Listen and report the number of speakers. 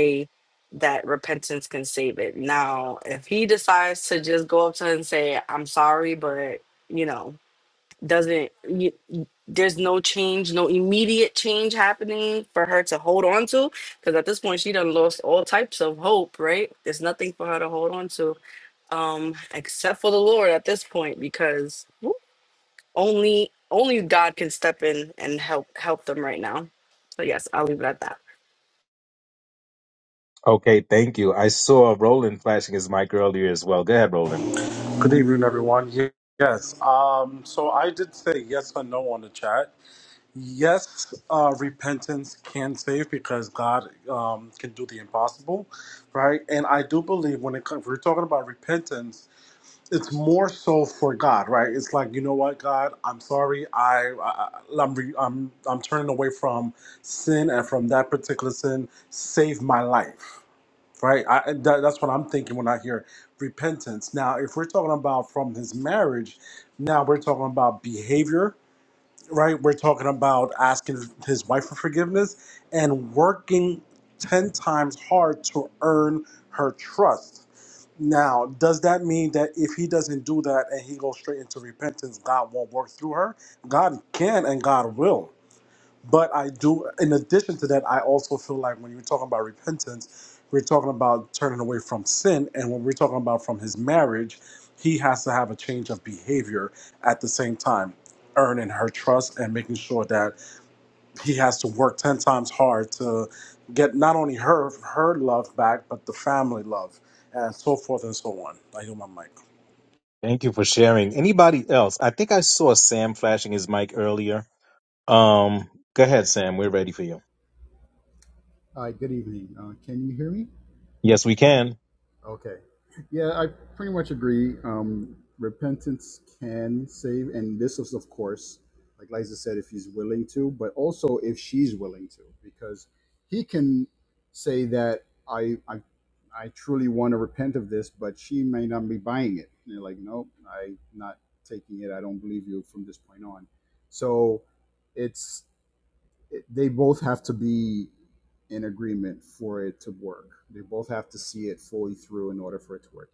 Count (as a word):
four